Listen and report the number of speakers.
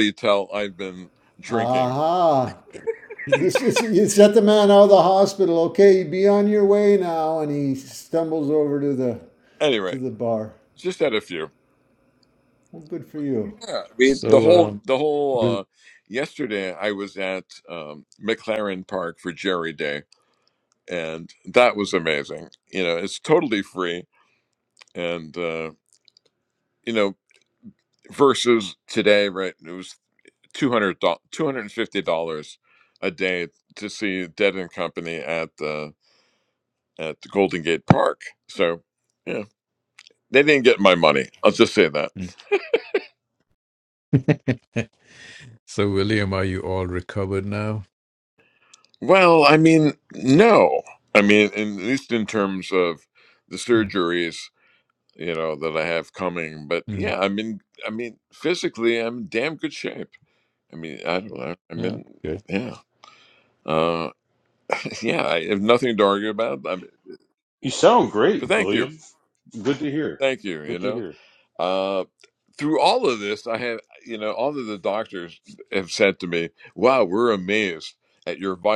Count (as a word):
four